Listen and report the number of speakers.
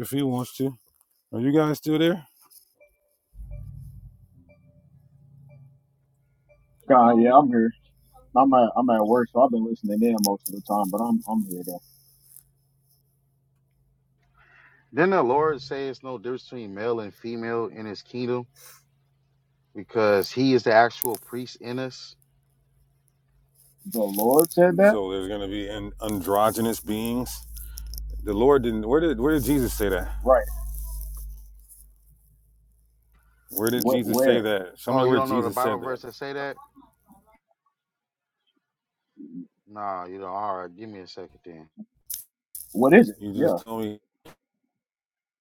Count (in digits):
3